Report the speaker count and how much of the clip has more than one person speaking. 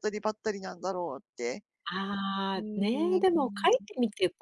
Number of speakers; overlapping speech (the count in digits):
2, about 21%